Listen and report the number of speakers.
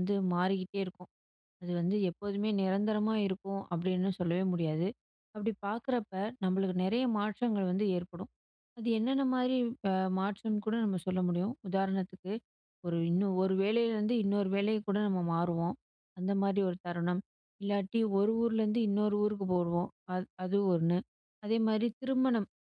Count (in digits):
1